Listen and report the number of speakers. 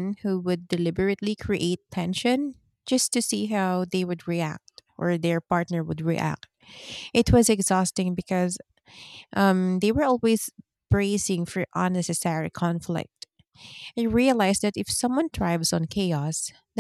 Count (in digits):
1